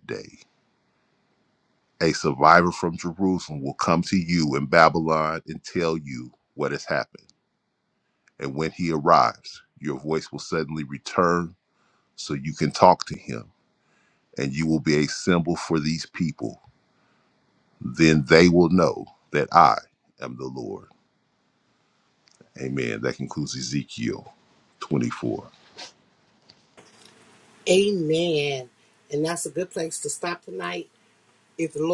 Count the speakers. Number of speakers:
2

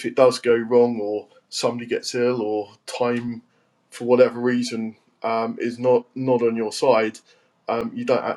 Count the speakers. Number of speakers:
1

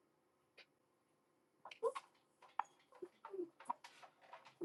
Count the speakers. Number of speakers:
0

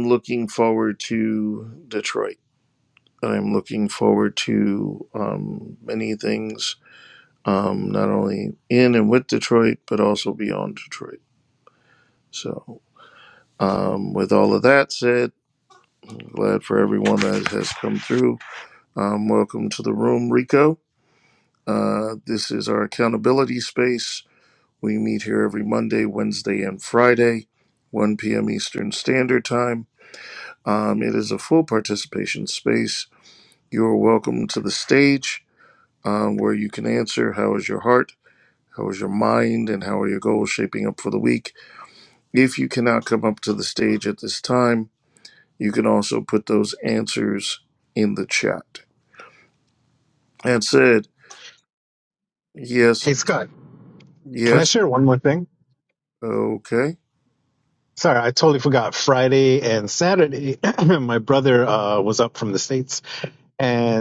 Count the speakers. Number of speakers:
2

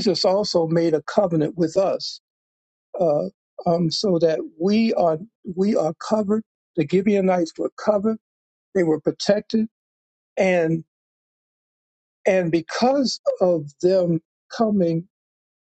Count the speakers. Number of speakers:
1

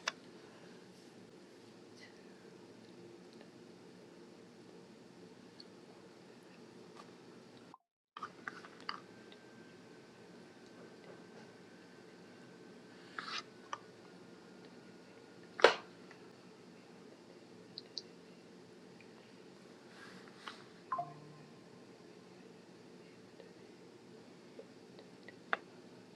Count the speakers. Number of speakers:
0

